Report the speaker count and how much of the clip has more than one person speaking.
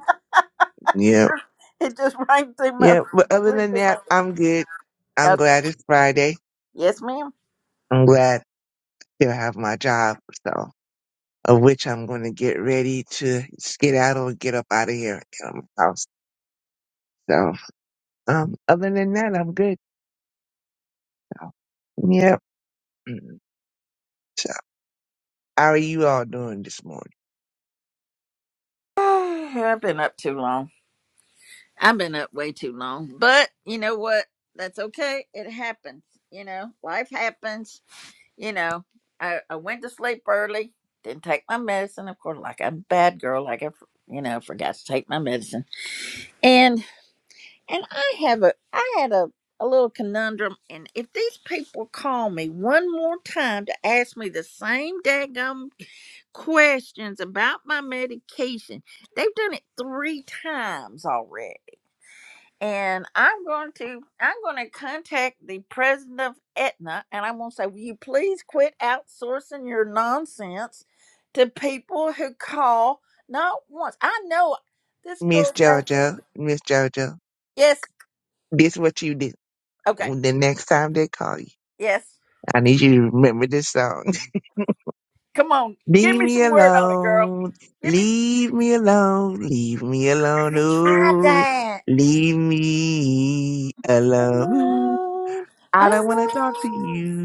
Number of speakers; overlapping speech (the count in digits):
2, about 6%